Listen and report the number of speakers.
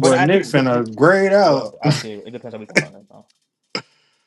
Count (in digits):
2